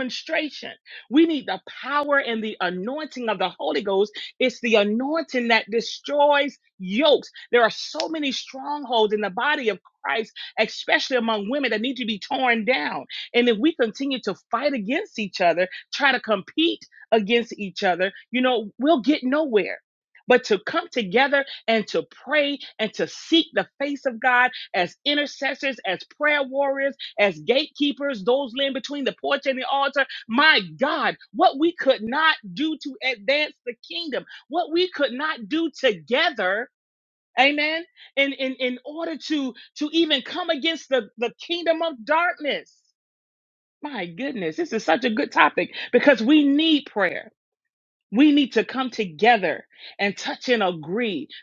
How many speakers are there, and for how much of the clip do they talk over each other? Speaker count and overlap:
one, no overlap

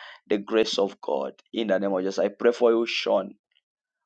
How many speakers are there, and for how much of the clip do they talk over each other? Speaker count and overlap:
one, no overlap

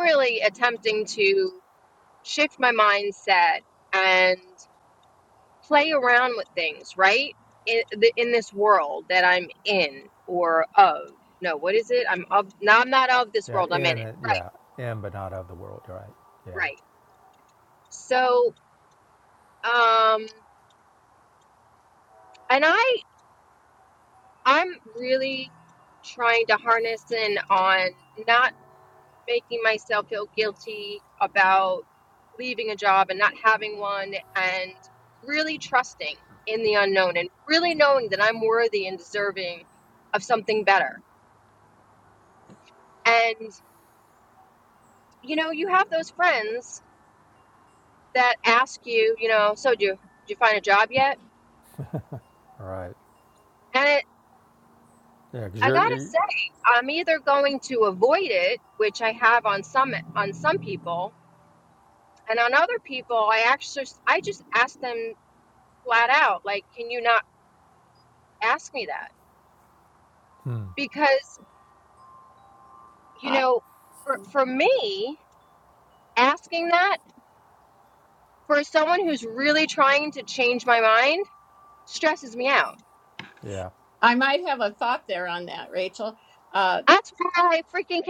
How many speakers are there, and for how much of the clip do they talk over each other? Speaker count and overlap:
three, about 2%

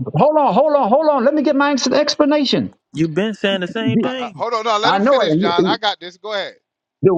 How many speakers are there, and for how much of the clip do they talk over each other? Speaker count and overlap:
three, about 18%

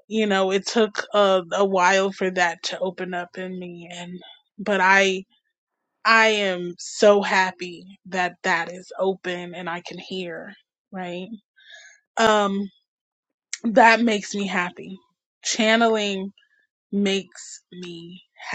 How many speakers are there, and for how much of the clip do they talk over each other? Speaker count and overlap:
one, no overlap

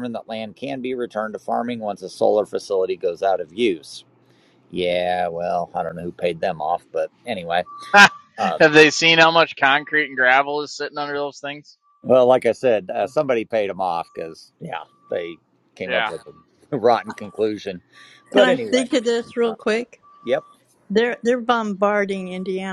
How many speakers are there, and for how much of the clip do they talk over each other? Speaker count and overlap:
three, about 4%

